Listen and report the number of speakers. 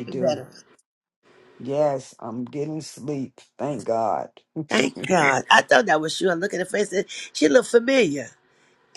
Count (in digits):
2